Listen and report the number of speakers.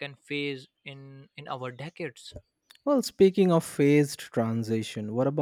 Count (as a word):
two